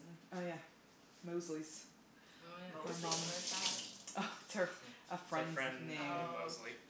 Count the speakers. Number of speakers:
3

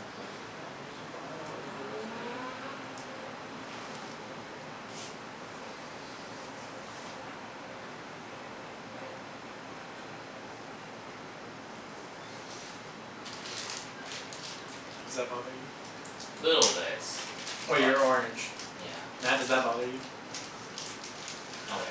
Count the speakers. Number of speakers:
2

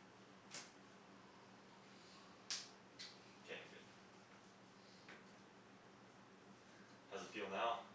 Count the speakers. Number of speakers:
1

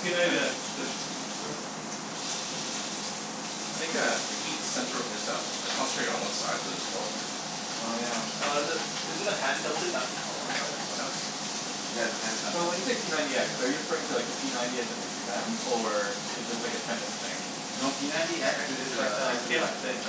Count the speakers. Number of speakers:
4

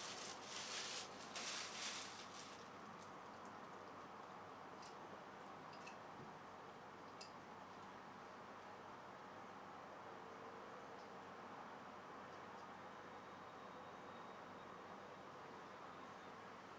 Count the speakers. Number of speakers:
0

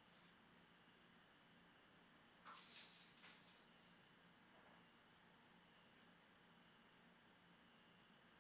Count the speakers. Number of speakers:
0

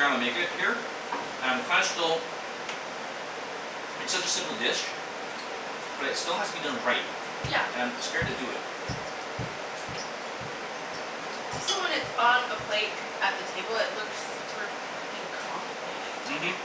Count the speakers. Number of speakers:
2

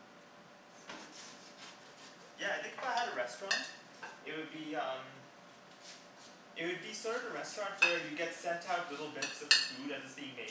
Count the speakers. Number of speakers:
1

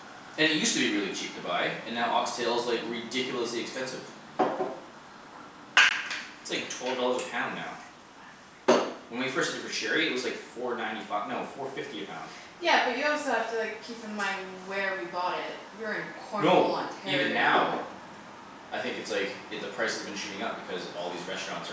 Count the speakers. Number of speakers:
2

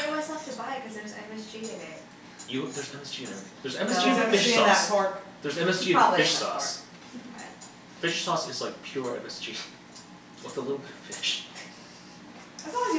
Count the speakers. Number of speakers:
3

